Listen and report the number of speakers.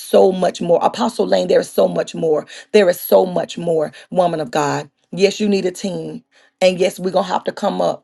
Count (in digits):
1